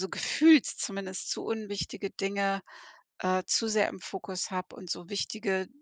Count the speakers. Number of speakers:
1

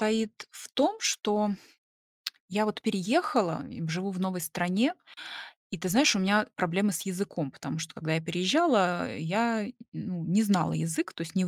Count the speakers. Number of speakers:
1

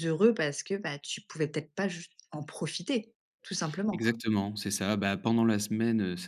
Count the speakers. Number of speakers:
2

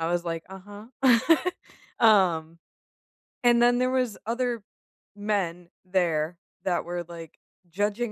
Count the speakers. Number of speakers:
1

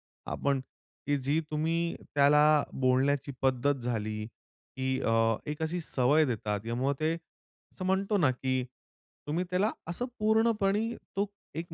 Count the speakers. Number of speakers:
1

